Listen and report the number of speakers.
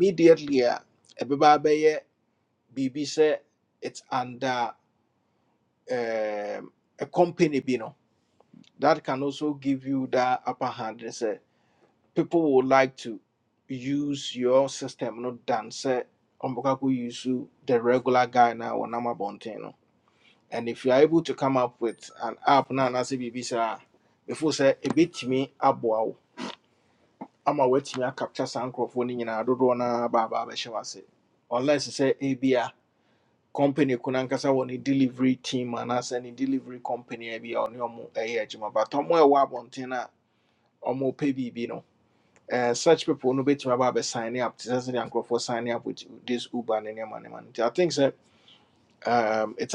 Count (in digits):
1